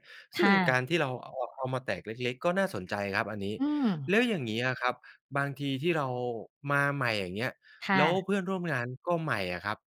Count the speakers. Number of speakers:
2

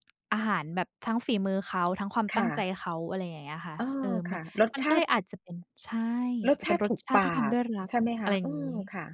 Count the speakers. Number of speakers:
2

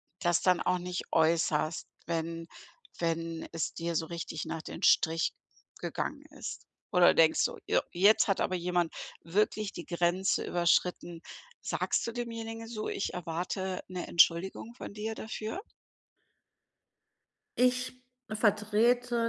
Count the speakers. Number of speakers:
2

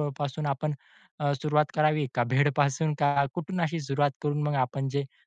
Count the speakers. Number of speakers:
1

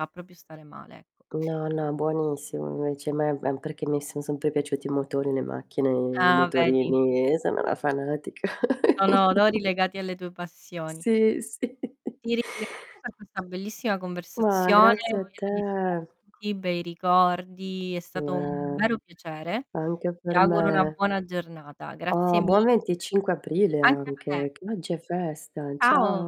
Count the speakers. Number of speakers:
2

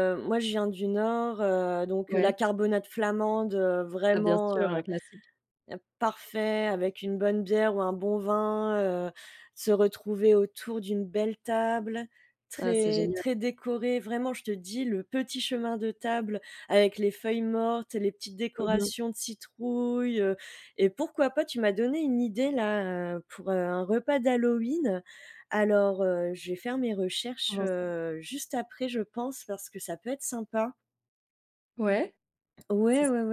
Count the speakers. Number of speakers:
2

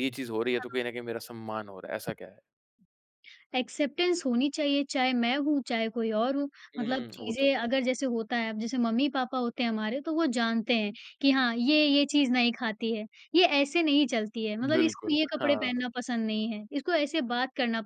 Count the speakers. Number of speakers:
2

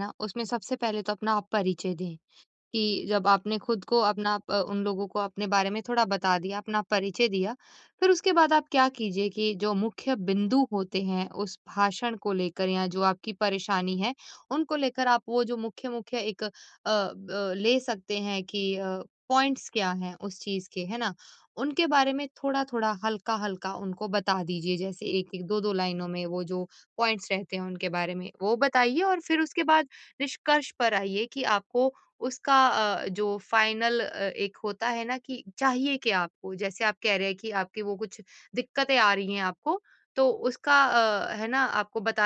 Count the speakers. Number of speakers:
1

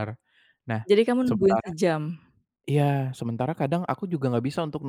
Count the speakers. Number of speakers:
2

